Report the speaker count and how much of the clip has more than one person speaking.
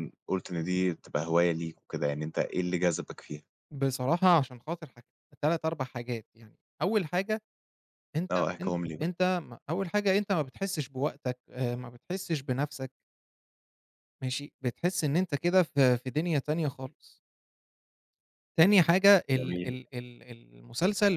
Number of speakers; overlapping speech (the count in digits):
2, about 5%